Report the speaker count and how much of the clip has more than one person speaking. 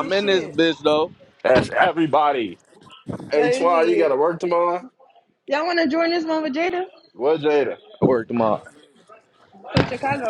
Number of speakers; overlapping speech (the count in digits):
3, about 14%